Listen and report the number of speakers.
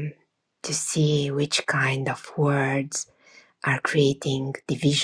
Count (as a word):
one